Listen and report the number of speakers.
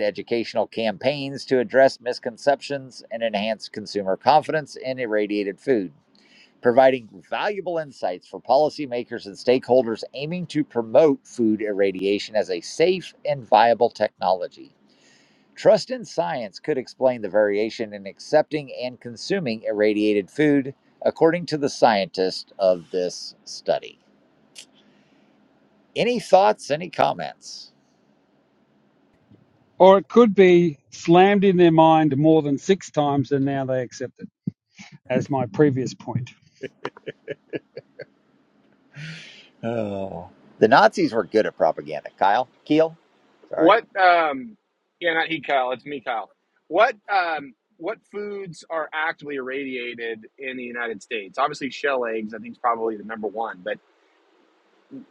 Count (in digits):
3